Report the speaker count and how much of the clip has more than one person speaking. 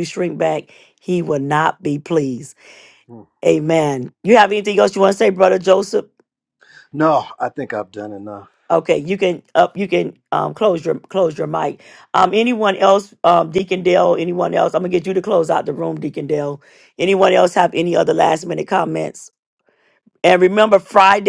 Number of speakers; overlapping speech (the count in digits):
2, no overlap